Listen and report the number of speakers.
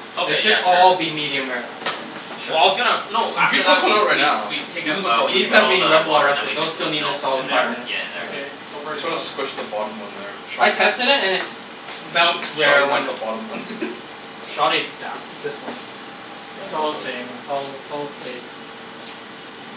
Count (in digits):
4